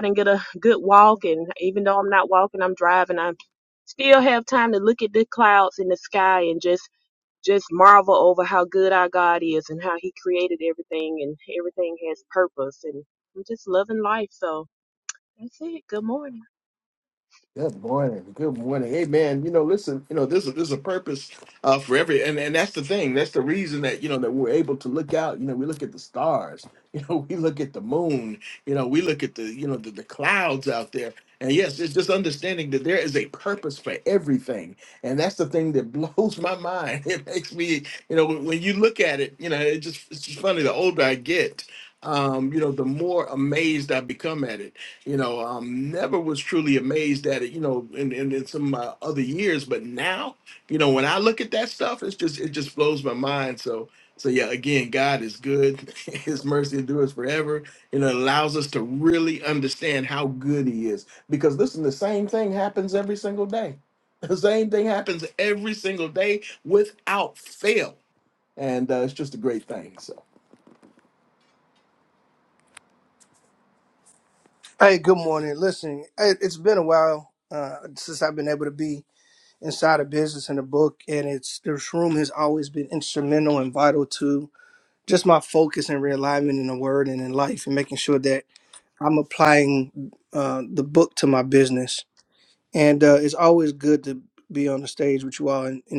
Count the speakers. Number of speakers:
3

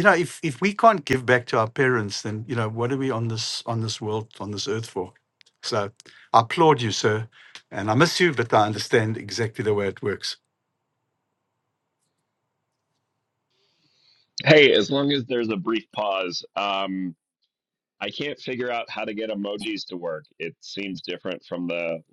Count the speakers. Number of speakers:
2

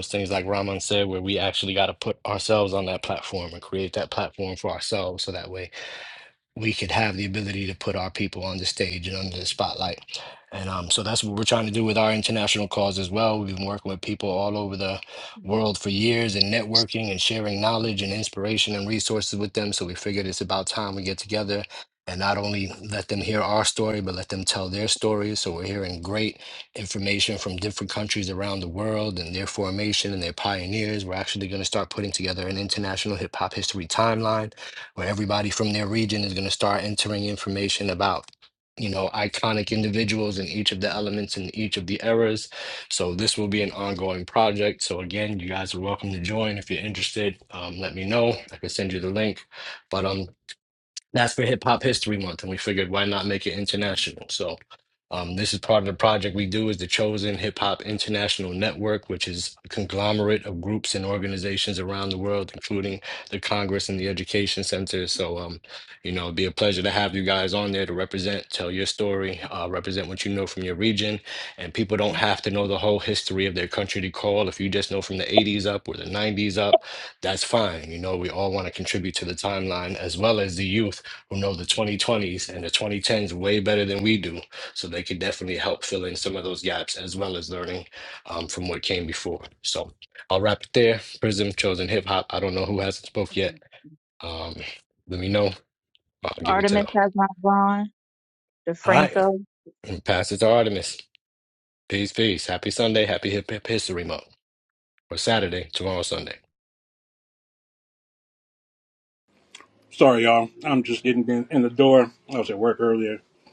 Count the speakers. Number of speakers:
3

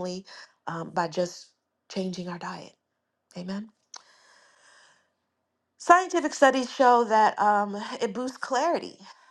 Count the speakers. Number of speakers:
1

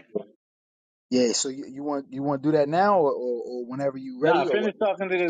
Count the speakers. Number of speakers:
2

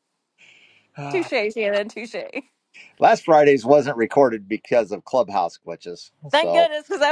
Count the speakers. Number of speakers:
2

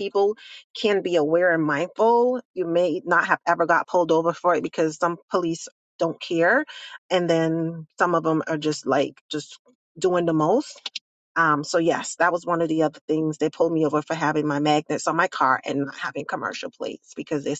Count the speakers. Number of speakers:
1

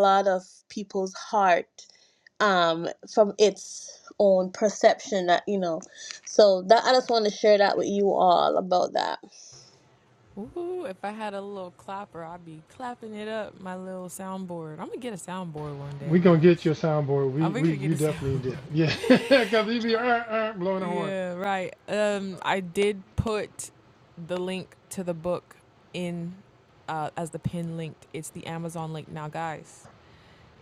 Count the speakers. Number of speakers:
3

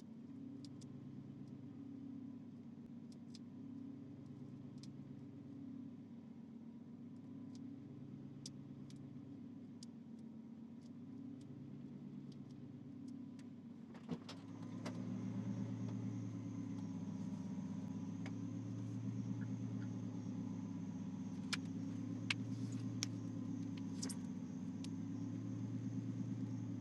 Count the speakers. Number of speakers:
0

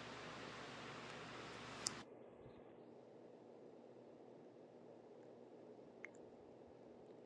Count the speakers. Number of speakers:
0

